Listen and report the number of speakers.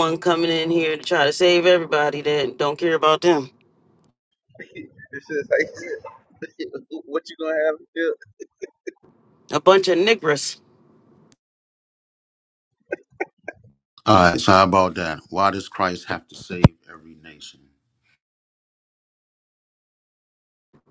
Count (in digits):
3